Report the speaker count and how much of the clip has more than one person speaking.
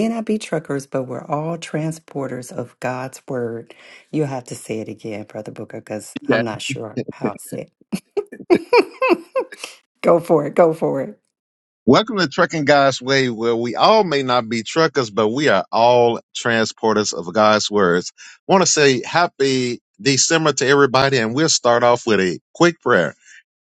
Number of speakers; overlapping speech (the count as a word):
two, about 1%